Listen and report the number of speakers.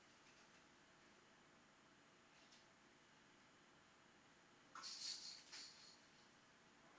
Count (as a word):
zero